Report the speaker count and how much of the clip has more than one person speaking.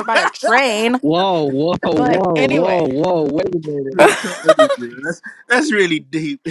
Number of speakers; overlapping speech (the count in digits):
3, about 16%